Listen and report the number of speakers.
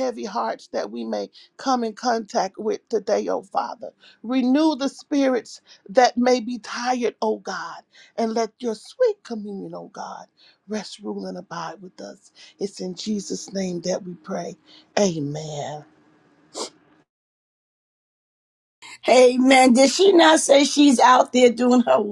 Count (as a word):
two